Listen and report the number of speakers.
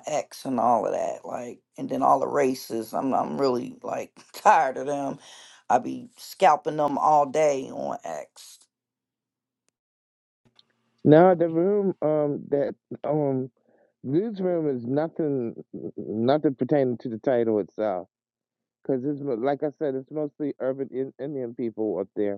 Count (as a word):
two